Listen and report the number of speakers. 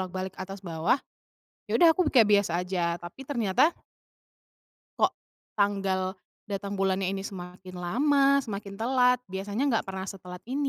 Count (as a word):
one